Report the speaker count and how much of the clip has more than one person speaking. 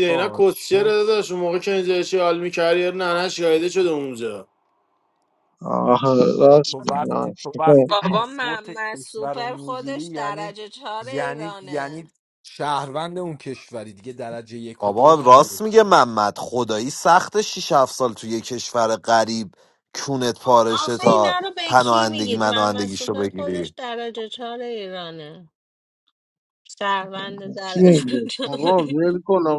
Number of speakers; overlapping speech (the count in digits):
6, about 34%